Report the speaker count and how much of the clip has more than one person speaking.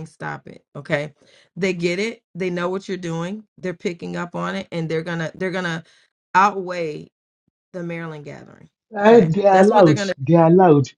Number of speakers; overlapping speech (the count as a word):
two, about 10%